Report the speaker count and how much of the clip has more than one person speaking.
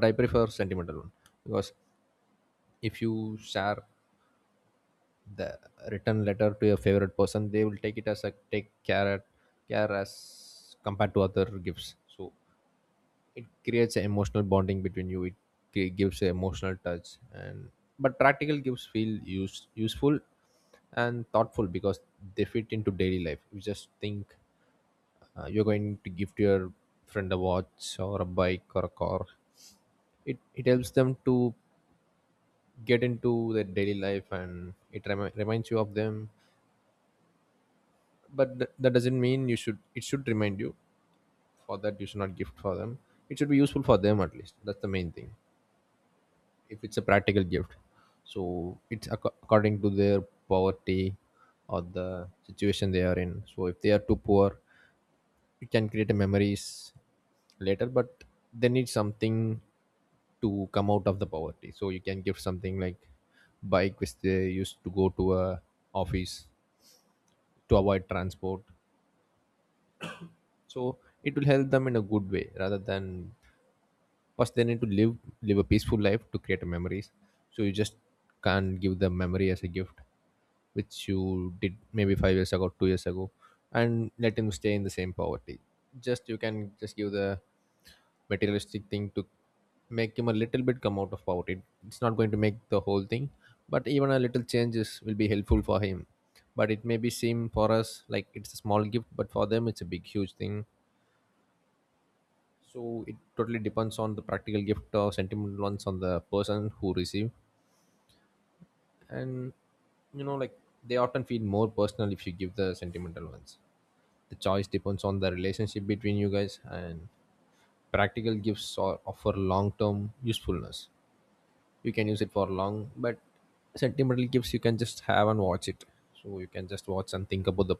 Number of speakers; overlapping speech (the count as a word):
one, no overlap